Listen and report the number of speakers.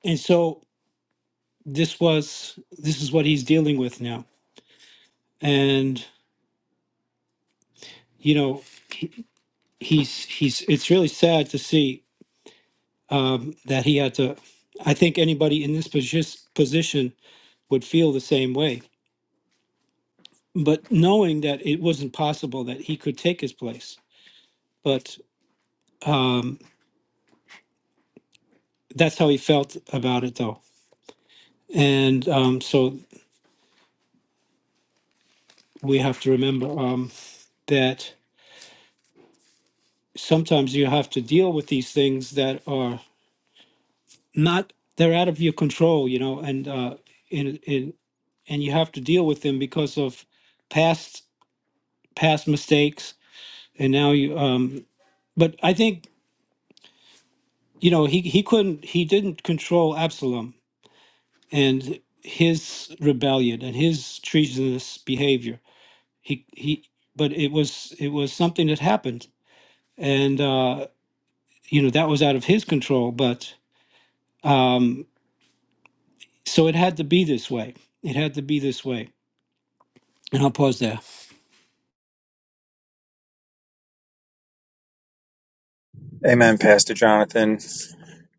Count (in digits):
2